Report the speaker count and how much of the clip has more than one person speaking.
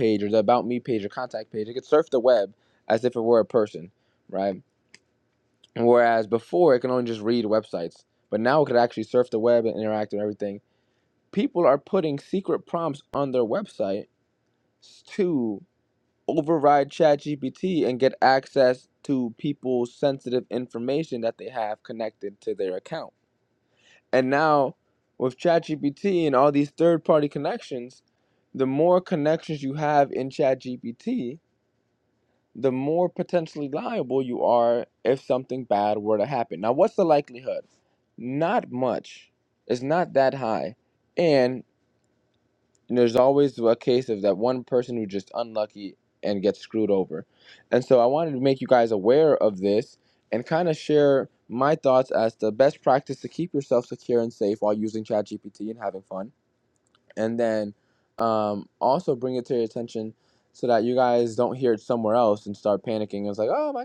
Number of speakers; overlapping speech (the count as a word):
one, no overlap